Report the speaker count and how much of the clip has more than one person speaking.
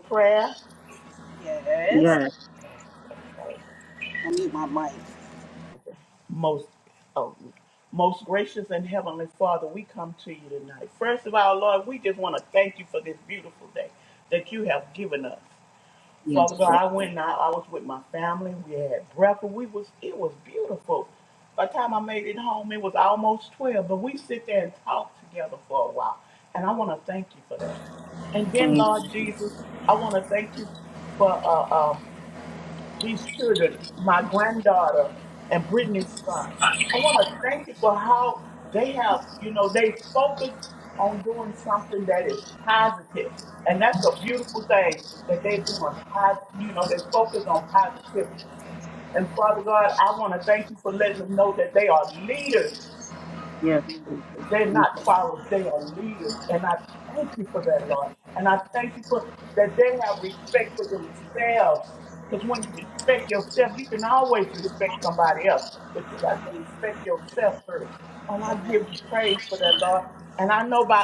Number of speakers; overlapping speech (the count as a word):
three, about 3%